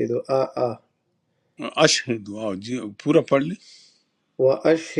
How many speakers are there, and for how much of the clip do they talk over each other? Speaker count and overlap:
2, no overlap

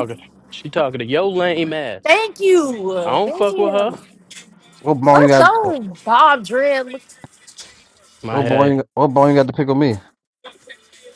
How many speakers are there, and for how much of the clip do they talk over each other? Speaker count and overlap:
3, about 16%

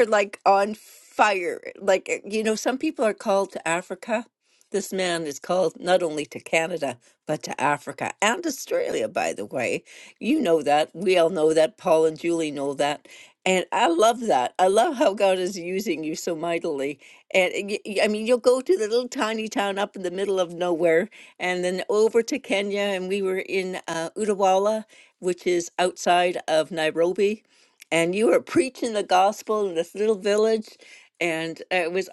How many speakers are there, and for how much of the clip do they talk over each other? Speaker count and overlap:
1, no overlap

